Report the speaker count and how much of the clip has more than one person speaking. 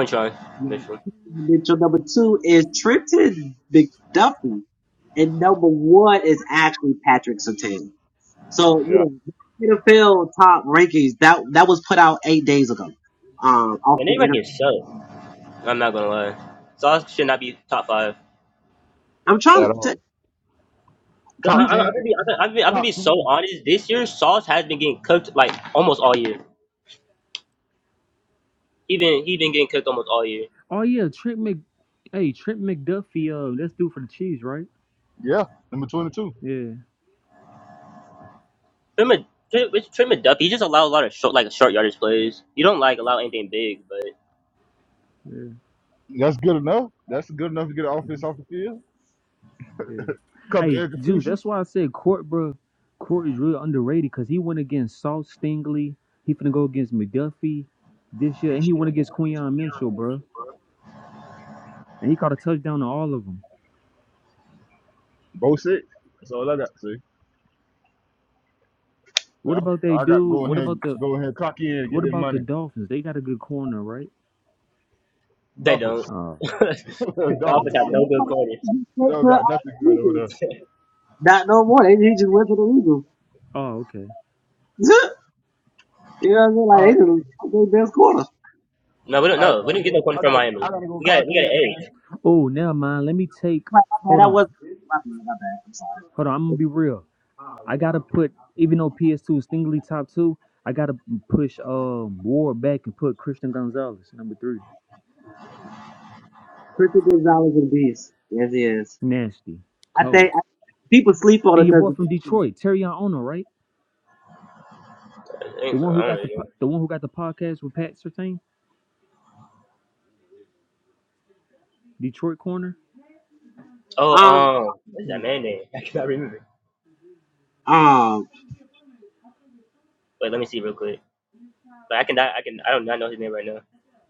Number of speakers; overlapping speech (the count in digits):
4, about 8%